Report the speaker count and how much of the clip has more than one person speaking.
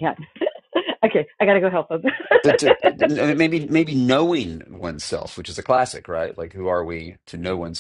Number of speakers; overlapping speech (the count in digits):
2, no overlap